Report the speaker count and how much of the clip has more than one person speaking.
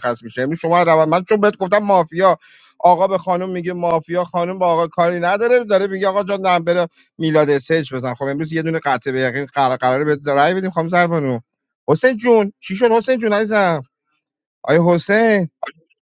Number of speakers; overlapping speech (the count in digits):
1, no overlap